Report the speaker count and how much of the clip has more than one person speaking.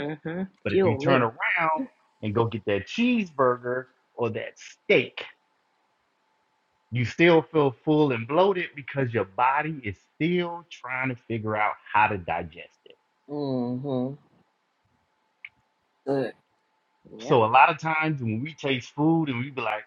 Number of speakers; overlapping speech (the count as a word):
three, about 4%